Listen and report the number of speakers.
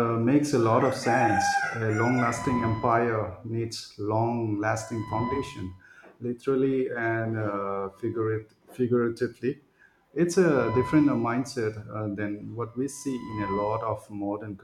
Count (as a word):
one